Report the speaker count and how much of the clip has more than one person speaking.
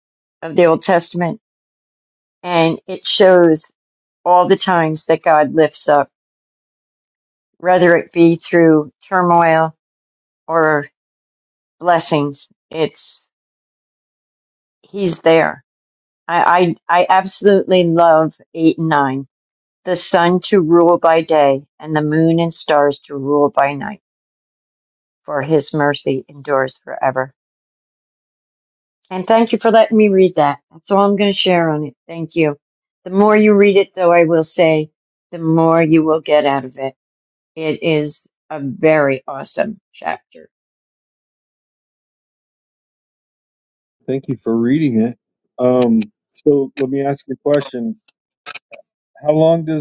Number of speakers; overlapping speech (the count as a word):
two, no overlap